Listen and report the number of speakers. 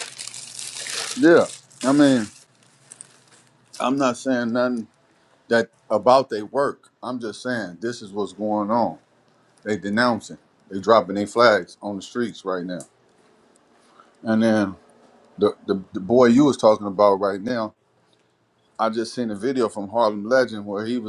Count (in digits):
1